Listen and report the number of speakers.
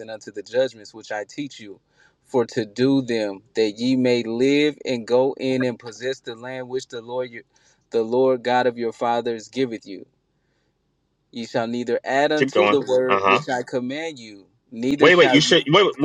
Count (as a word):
two